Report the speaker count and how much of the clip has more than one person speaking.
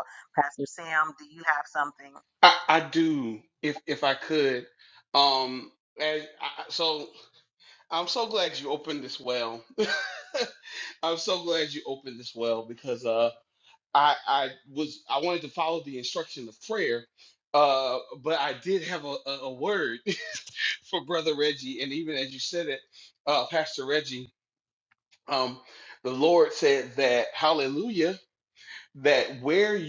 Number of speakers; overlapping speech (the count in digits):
2, no overlap